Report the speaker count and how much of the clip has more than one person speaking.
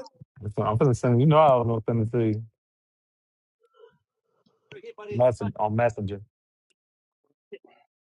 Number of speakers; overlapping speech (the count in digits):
1, no overlap